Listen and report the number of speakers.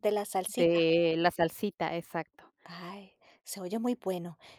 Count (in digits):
2